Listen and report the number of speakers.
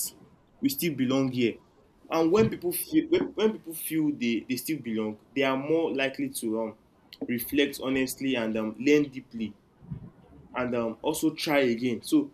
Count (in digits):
1